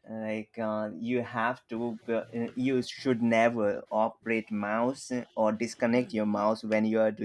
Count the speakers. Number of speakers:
1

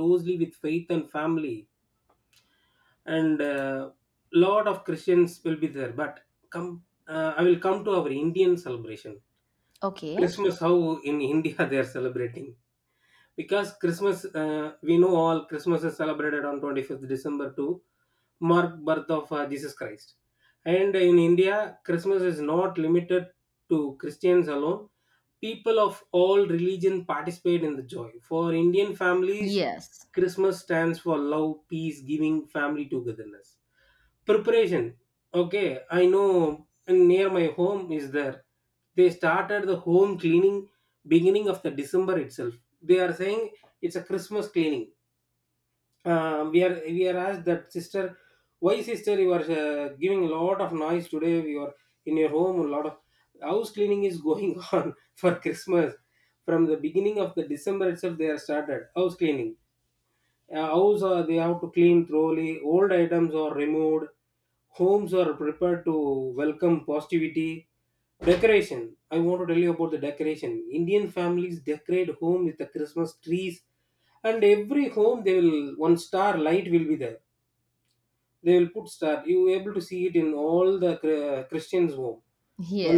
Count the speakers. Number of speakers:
2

